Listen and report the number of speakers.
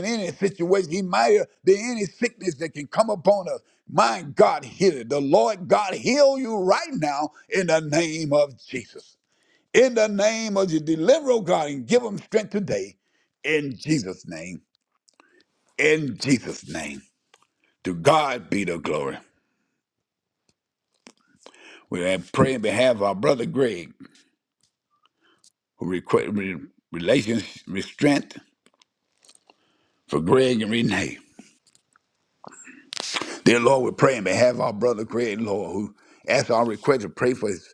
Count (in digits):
1